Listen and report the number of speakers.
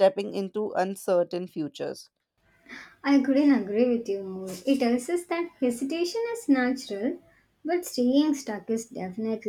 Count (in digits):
2